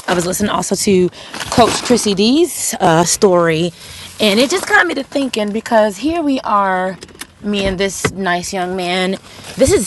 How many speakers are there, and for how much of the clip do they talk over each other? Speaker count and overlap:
1, no overlap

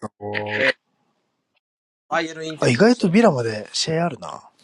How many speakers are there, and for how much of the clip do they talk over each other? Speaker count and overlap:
2, about 15%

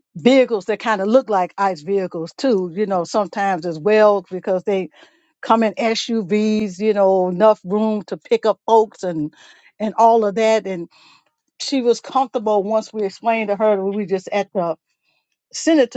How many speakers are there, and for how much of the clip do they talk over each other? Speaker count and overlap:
1, no overlap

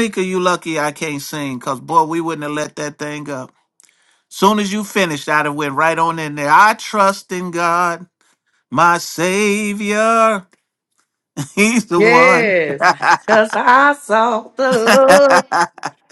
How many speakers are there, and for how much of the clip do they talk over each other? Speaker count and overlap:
2, about 3%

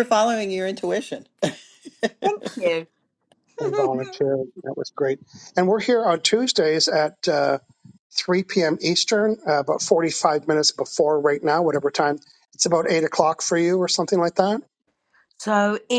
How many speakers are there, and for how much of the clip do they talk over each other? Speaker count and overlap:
3, about 3%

